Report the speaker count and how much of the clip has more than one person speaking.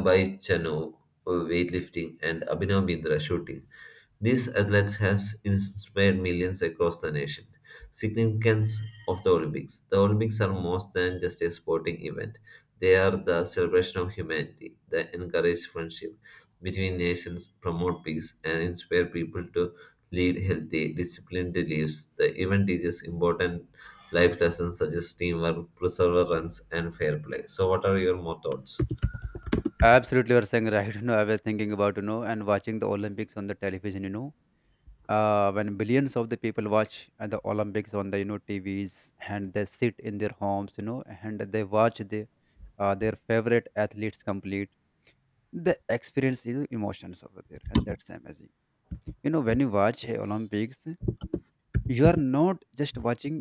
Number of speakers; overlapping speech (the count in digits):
2, no overlap